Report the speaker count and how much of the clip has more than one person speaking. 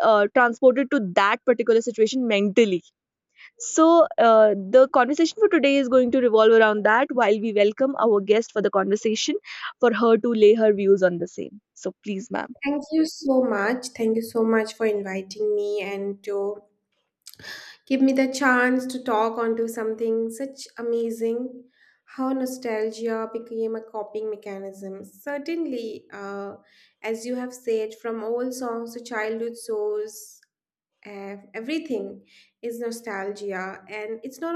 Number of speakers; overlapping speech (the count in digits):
2, no overlap